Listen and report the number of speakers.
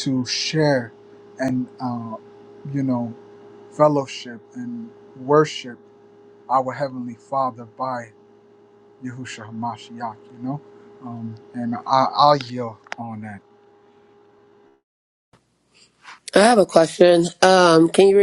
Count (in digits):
2